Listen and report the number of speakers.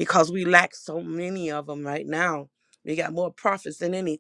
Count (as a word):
one